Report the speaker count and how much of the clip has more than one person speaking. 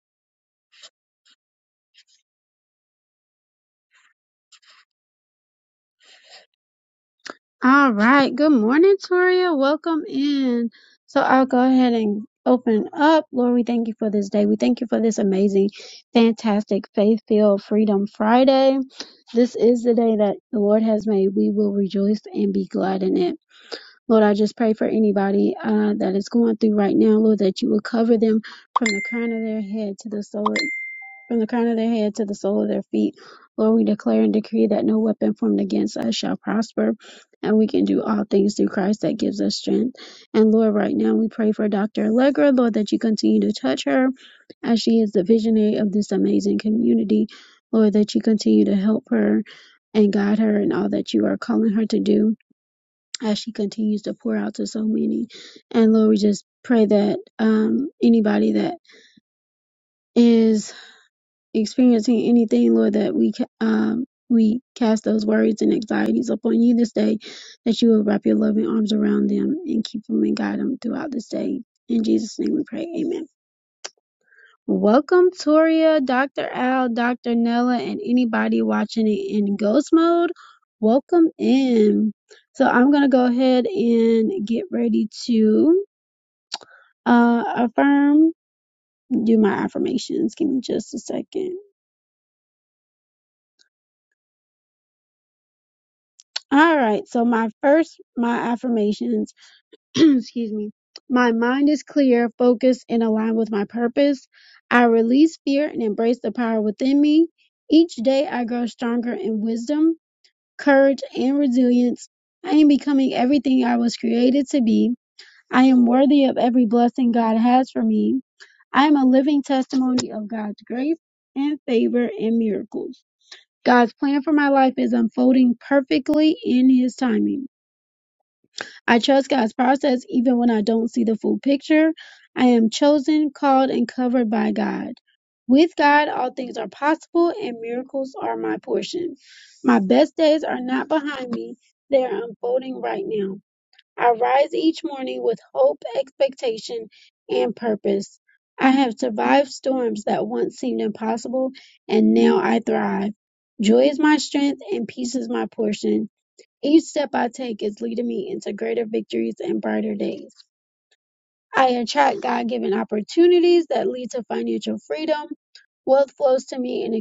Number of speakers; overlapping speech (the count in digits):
1, no overlap